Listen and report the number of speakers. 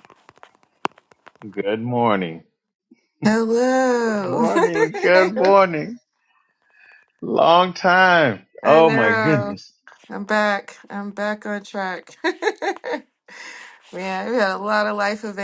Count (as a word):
two